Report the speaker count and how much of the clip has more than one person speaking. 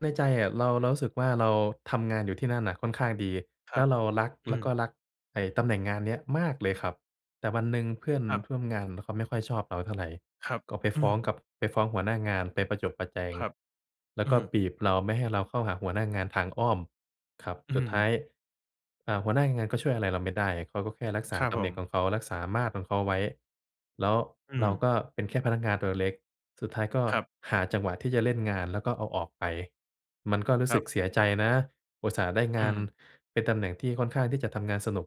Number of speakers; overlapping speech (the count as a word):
two, about 6%